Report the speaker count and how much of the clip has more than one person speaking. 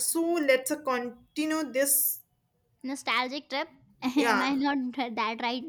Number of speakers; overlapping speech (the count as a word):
two, about 6%